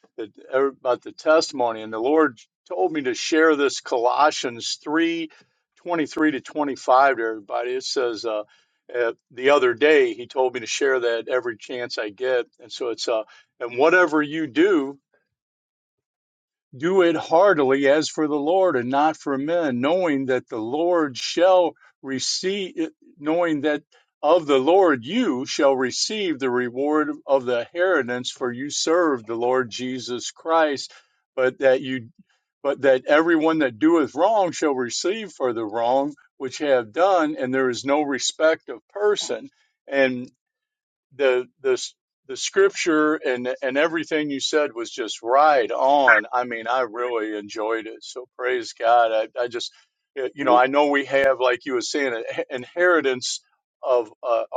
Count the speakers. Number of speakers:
1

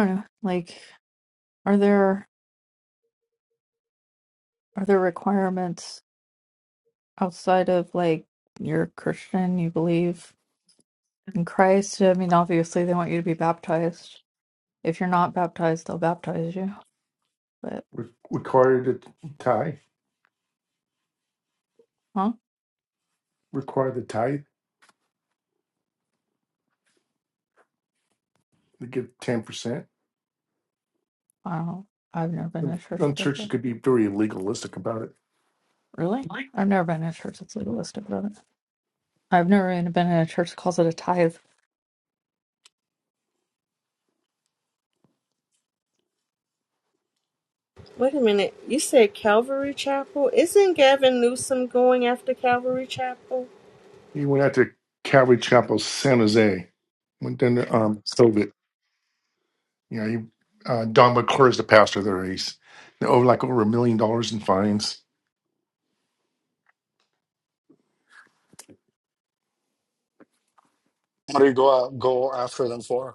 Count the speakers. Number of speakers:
4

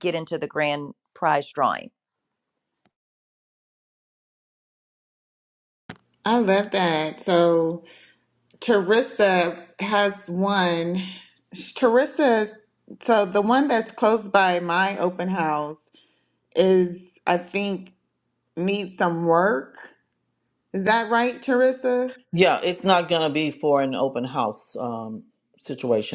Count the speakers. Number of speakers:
3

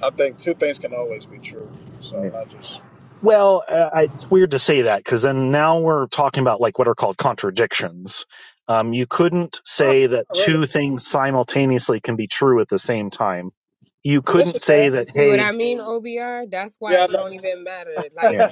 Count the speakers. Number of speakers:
3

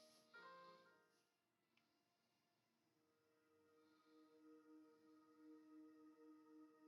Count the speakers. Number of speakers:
0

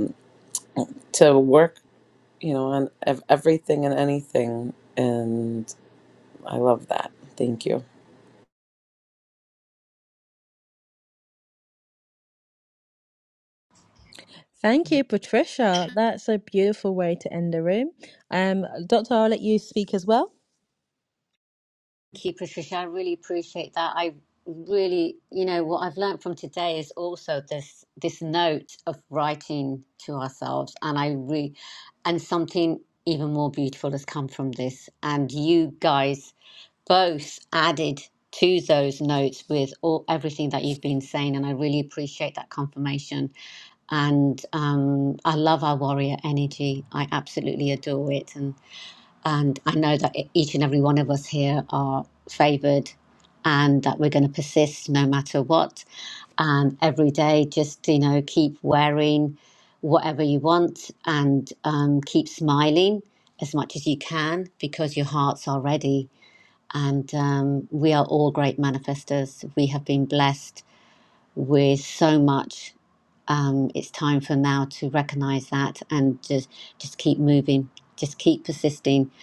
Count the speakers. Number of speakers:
3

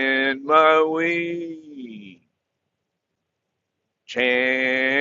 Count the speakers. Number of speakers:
1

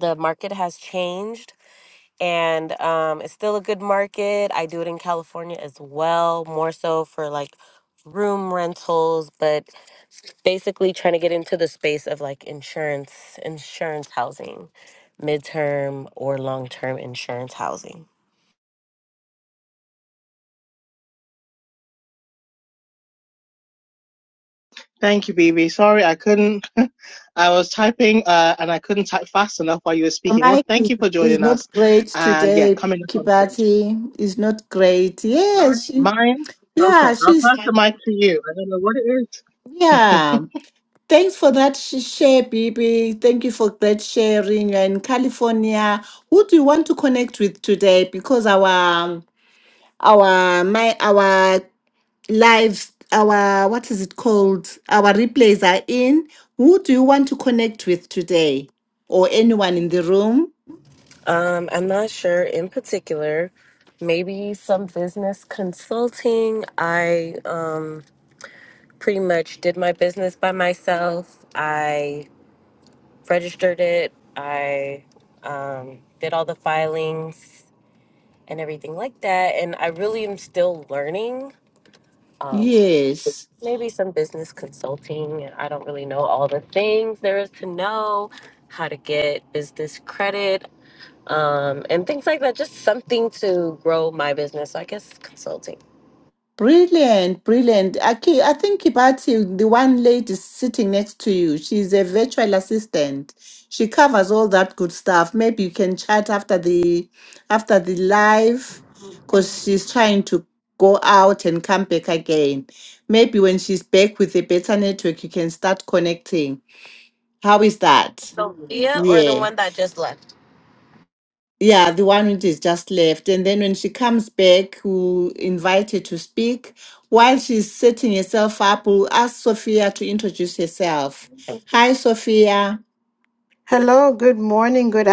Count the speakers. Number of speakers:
4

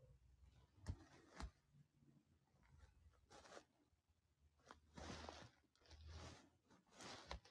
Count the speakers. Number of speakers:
0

